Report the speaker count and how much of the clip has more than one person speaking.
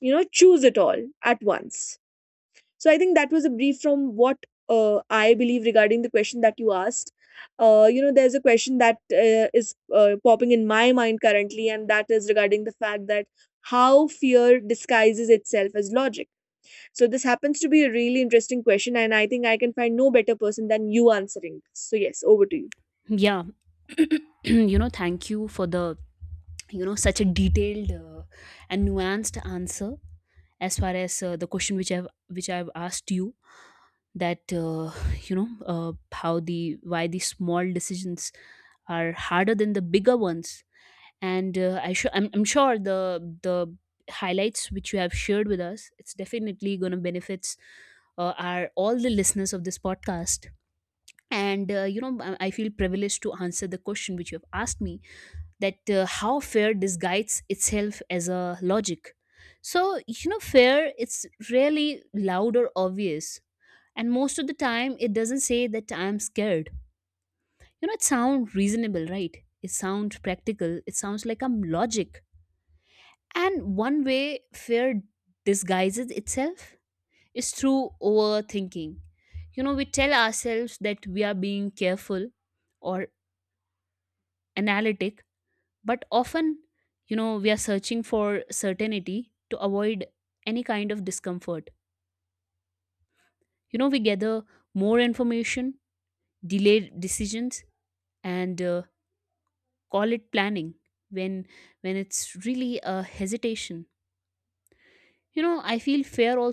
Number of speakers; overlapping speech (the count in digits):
2, no overlap